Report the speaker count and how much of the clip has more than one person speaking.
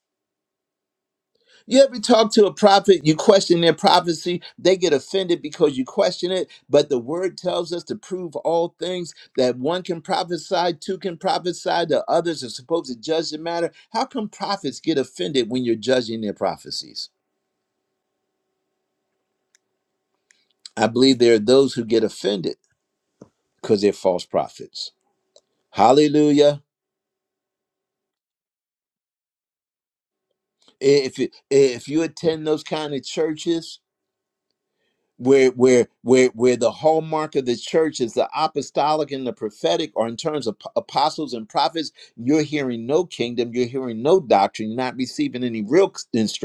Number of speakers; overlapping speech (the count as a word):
one, no overlap